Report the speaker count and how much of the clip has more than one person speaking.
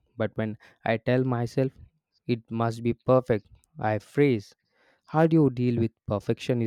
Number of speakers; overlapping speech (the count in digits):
1, no overlap